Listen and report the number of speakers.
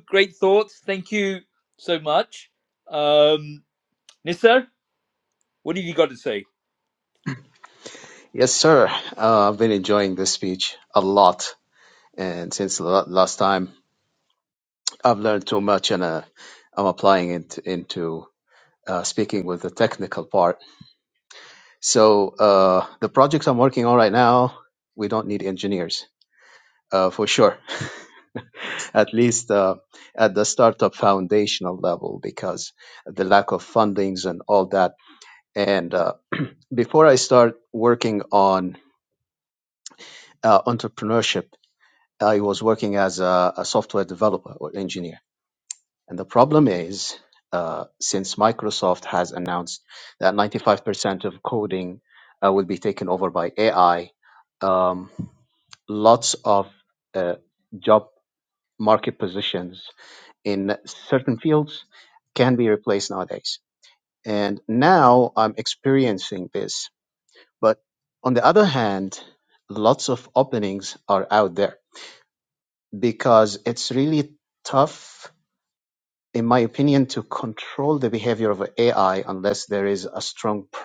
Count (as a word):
two